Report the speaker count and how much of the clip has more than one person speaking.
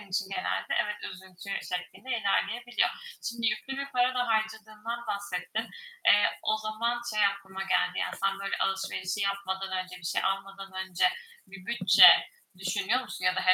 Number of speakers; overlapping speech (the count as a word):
one, no overlap